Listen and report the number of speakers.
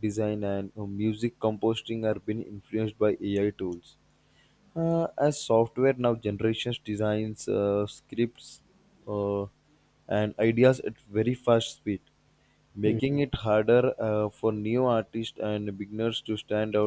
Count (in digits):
1